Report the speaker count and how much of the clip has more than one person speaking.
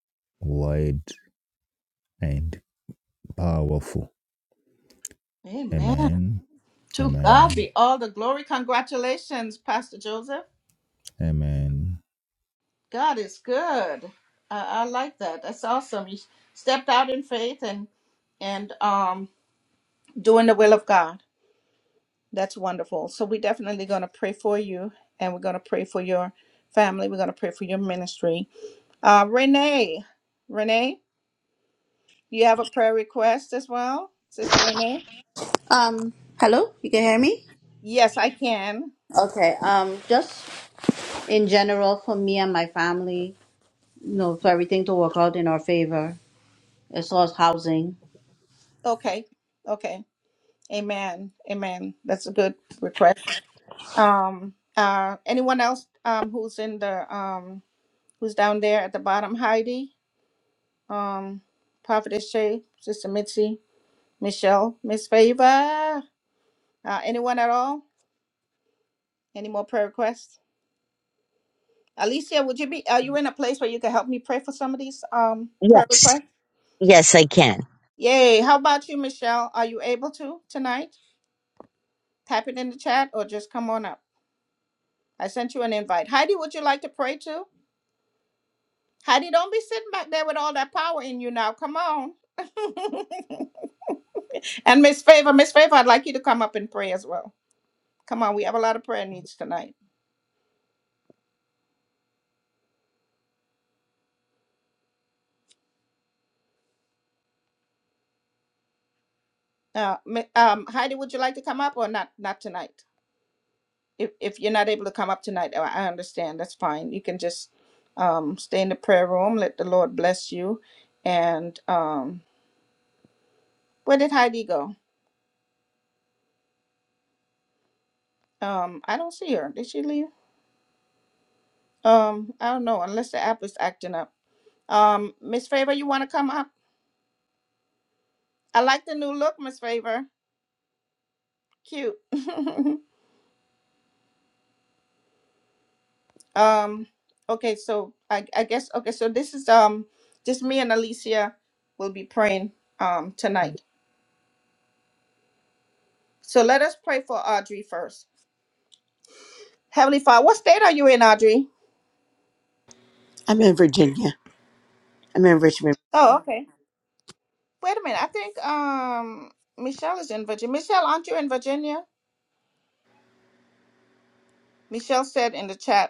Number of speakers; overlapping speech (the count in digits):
5, about 1%